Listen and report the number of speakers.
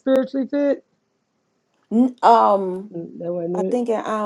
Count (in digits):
2